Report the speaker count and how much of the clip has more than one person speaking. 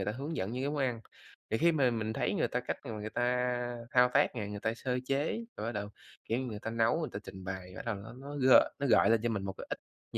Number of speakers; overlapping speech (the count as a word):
one, no overlap